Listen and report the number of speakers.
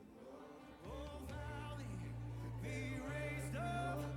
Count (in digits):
0